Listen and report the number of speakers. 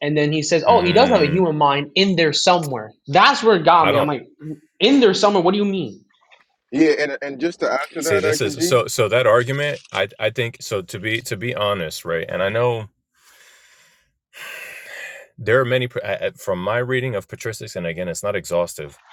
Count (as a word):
three